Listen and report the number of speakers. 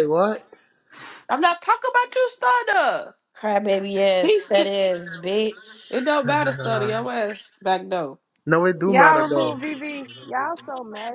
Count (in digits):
4